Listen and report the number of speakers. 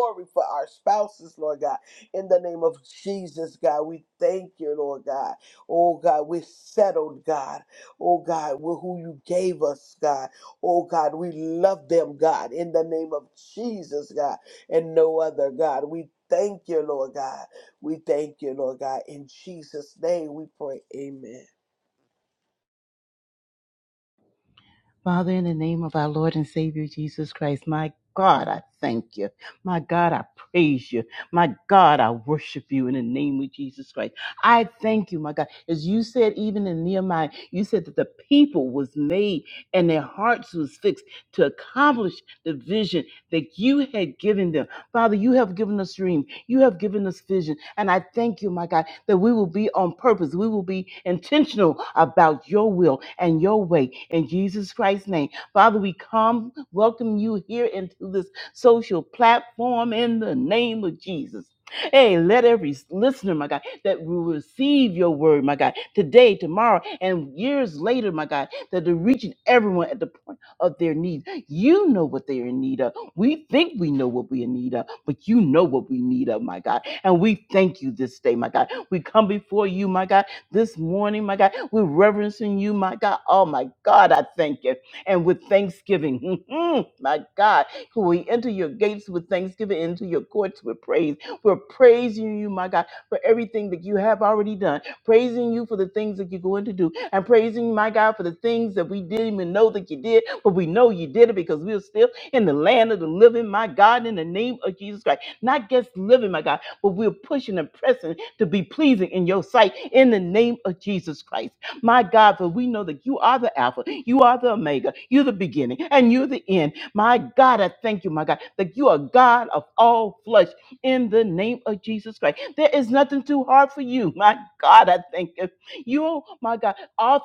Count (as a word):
two